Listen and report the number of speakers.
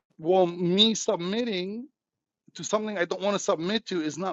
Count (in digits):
1